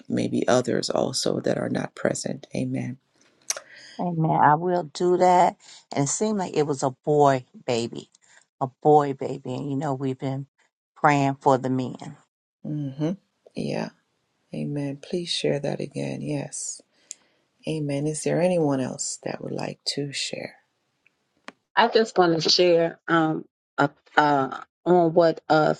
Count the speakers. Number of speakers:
three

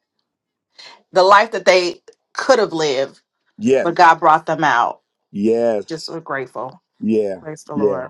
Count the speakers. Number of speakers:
two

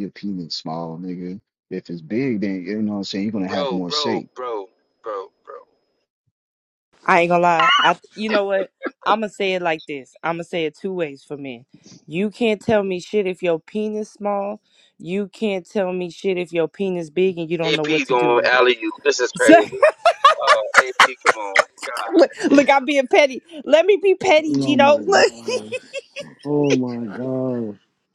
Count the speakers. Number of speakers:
four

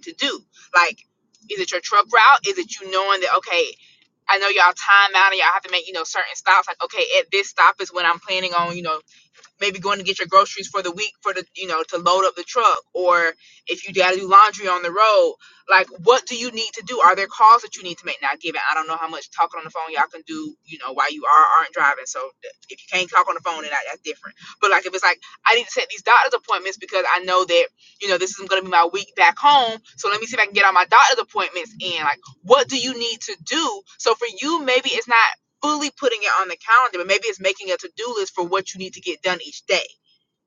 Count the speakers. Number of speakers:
one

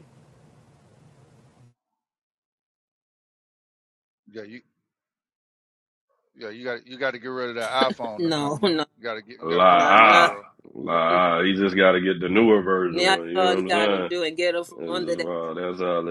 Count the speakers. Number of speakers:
three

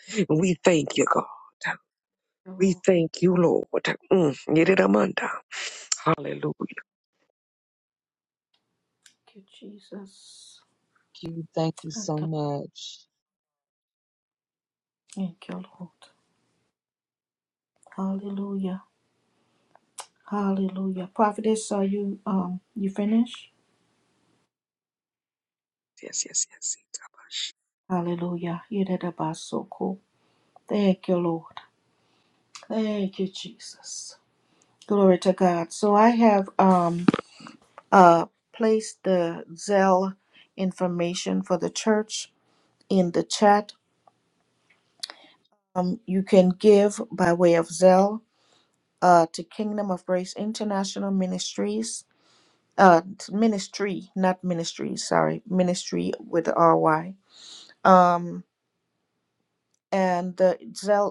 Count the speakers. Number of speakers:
three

